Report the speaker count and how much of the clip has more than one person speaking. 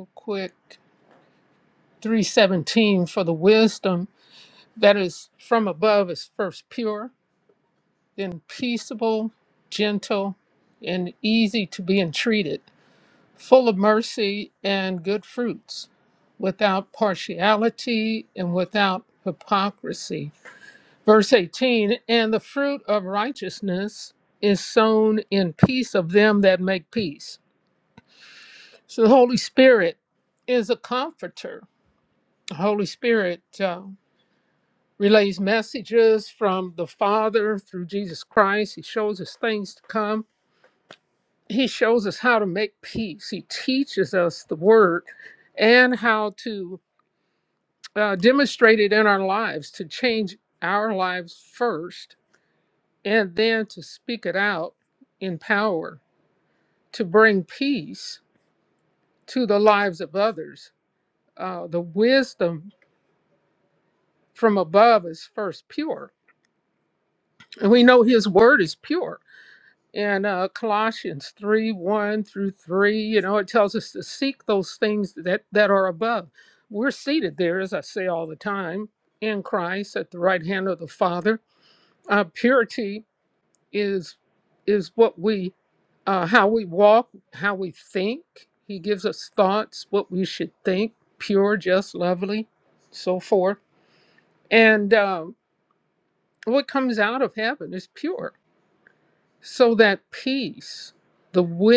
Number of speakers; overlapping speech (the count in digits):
1, no overlap